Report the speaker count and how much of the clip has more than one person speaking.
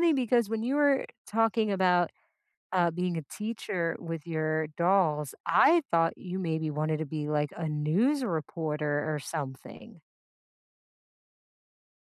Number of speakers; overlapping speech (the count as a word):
one, no overlap